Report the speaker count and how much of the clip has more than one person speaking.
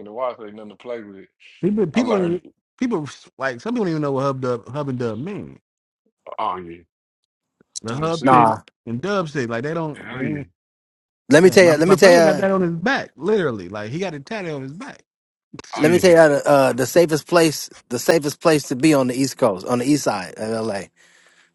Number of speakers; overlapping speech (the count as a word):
three, about 14%